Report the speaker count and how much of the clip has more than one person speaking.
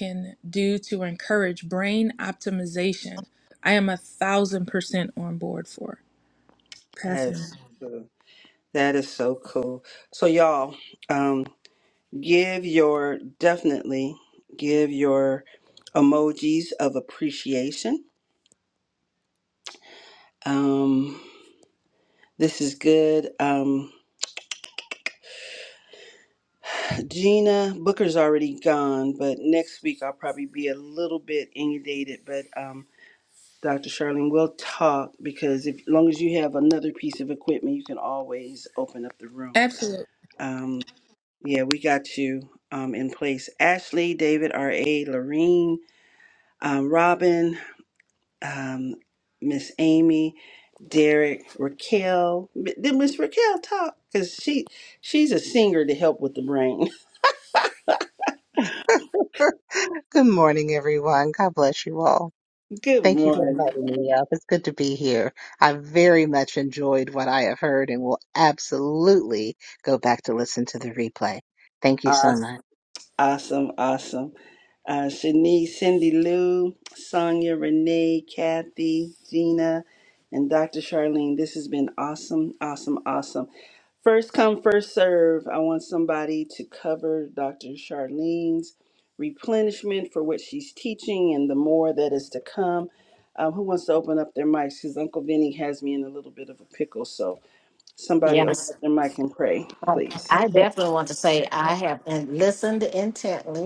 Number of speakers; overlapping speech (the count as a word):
four, about 2%